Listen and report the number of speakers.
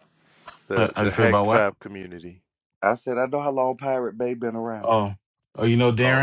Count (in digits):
3